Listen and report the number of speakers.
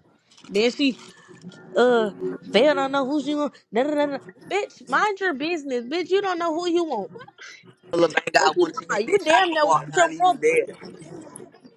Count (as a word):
two